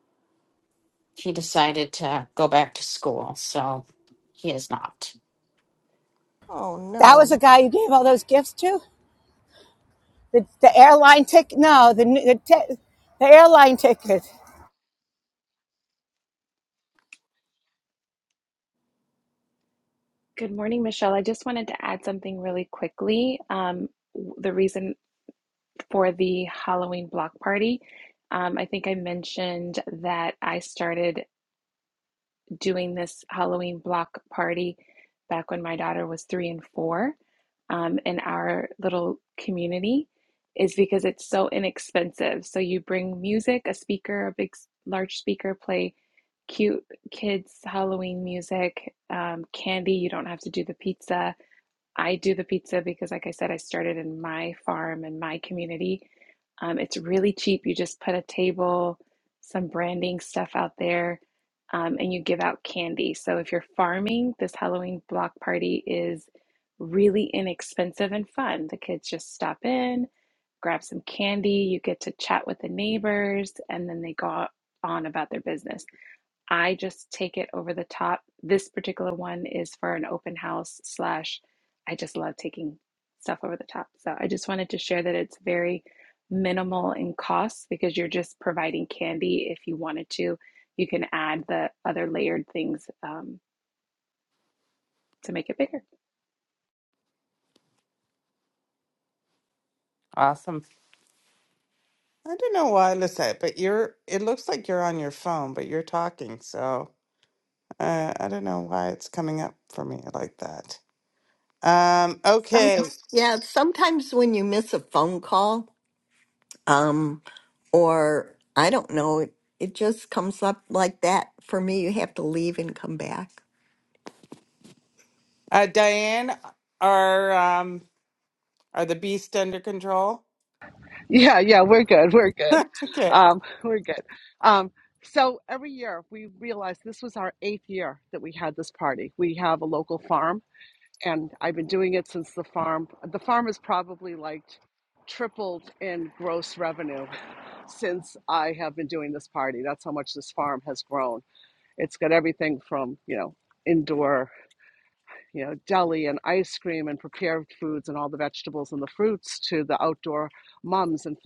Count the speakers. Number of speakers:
six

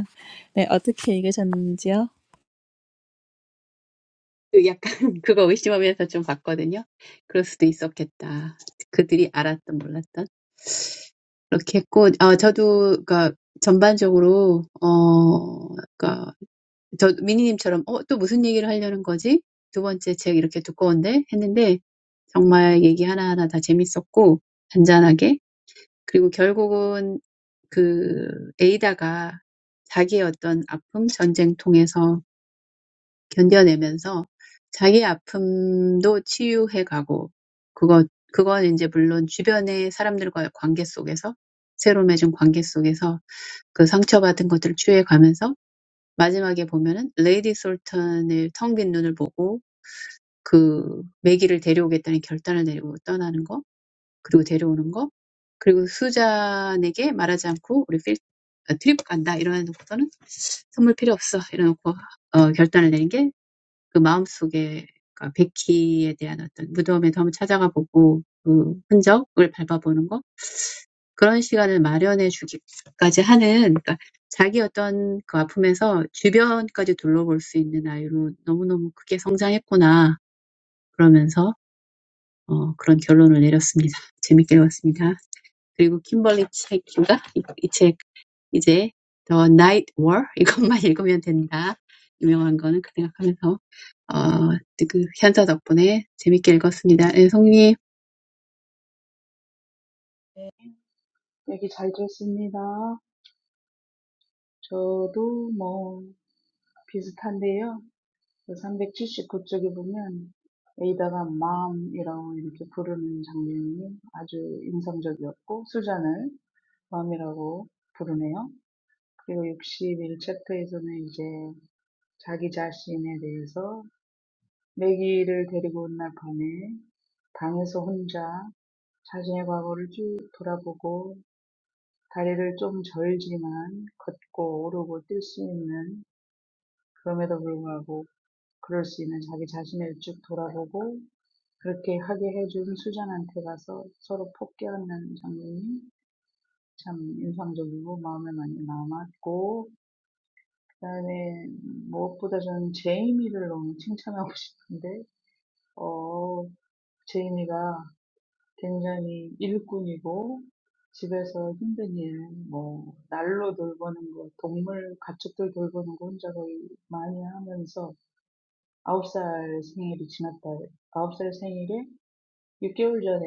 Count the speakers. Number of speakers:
three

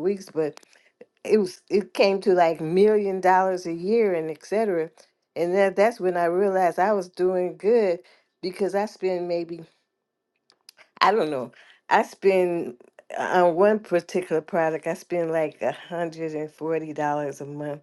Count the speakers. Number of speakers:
one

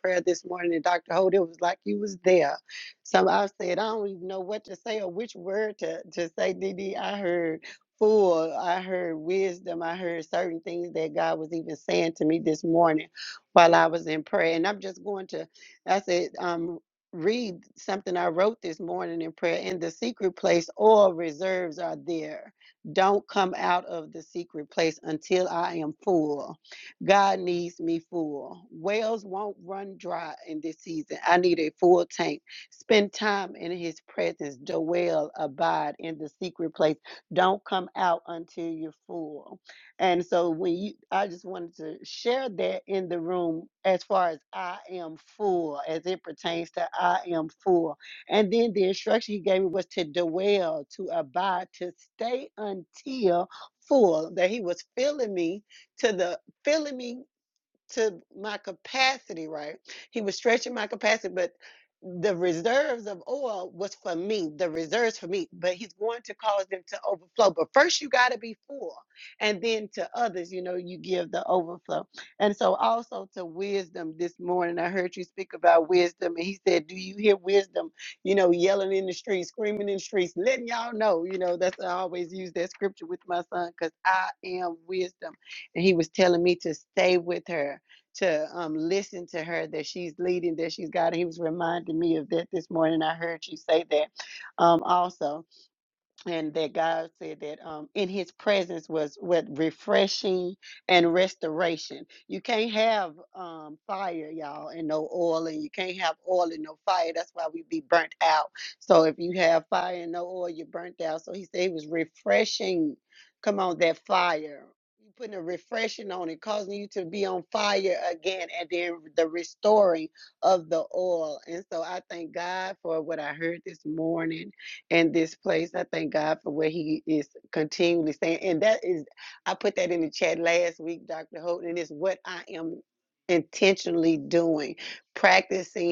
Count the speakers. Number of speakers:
one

